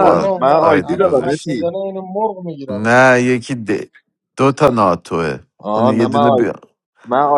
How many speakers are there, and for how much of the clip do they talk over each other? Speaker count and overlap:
three, about 37%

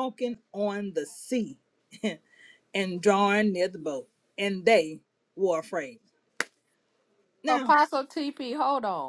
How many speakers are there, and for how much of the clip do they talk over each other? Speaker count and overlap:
two, about 3%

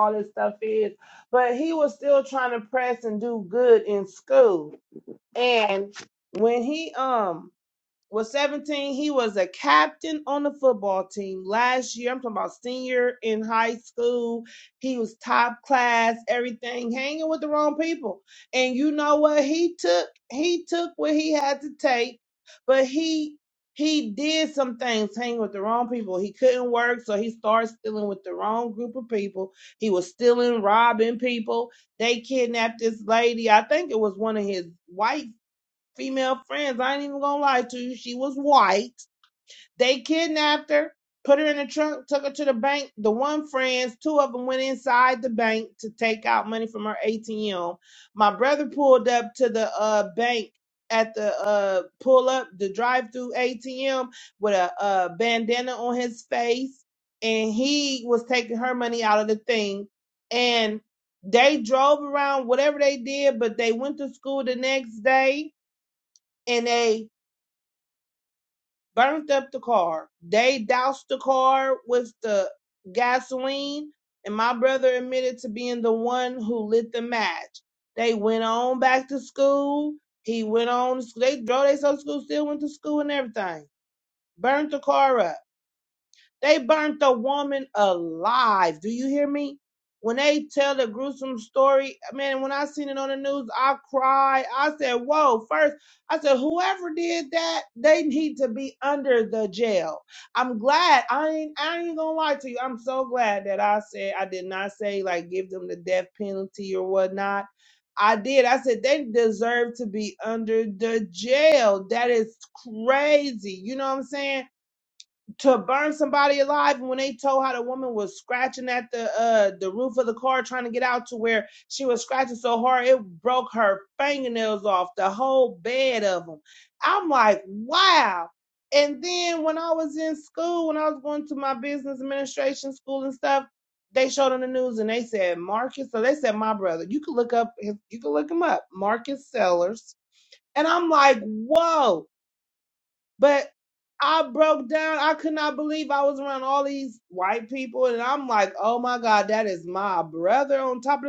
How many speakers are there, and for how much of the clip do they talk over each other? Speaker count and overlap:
one, no overlap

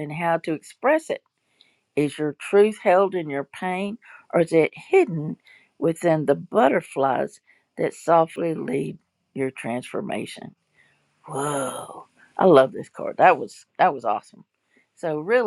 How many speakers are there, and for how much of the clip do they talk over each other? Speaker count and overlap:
one, no overlap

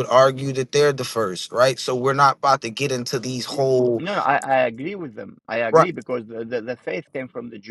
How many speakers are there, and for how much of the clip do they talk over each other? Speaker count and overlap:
two, about 4%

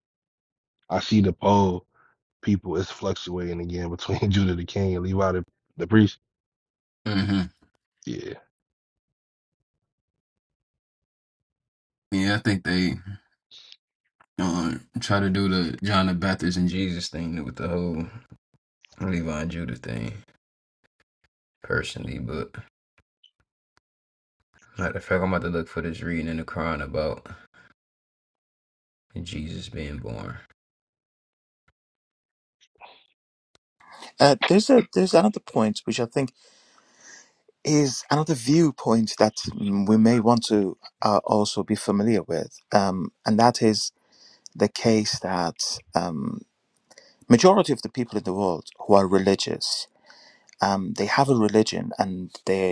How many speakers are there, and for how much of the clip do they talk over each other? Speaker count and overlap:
three, no overlap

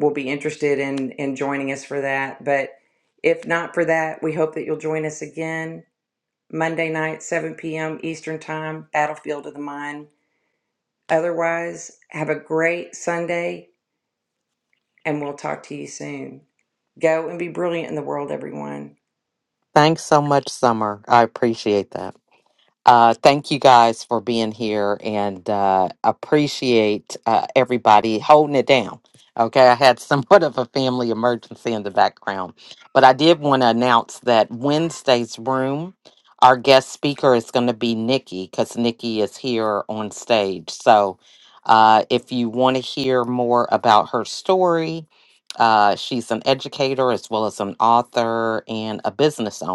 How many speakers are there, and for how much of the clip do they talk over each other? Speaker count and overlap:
two, no overlap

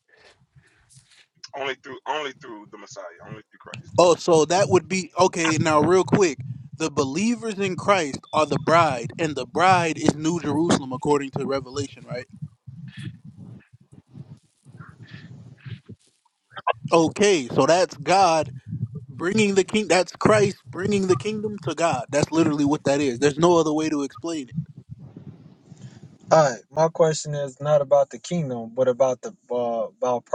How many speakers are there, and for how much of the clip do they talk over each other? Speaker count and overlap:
three, no overlap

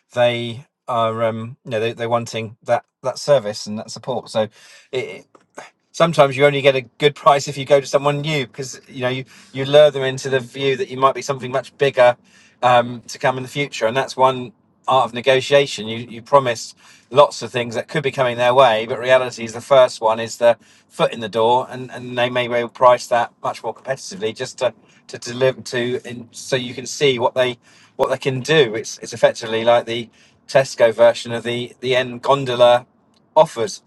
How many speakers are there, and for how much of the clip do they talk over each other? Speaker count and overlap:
one, no overlap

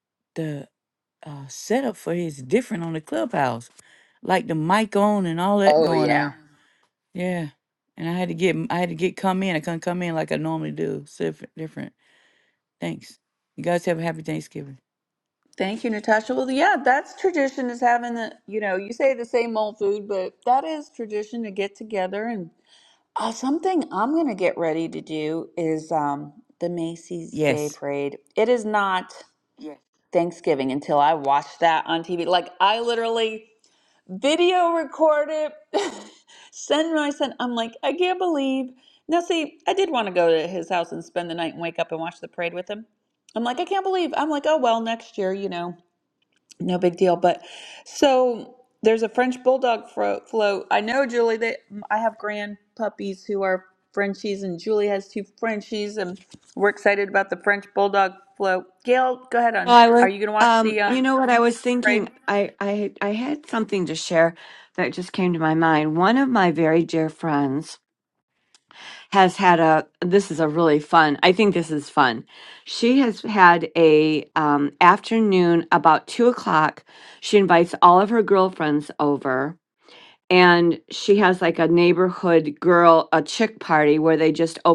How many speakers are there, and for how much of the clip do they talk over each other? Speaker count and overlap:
three, about 3%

